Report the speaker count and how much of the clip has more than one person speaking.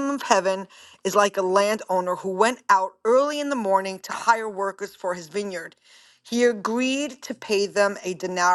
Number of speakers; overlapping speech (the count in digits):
1, no overlap